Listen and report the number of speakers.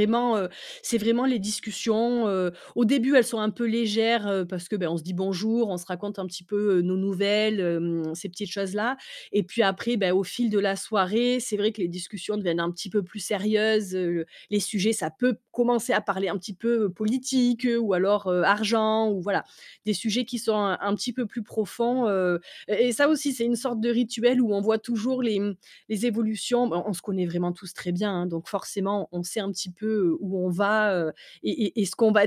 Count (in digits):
1